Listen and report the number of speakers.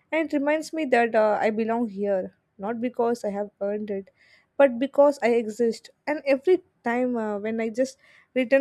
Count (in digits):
1